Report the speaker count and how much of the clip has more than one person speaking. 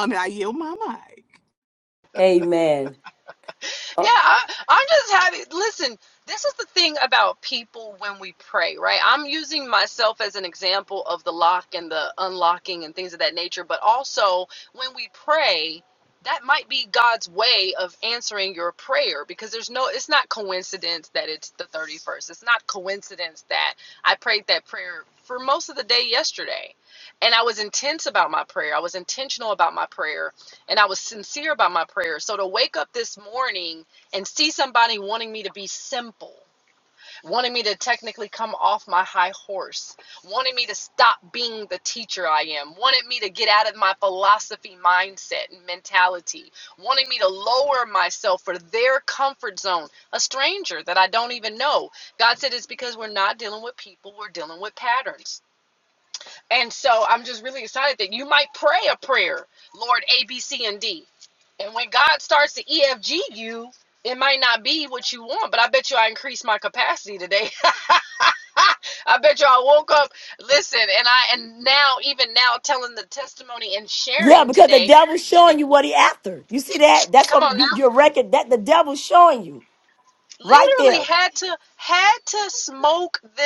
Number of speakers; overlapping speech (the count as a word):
three, about 2%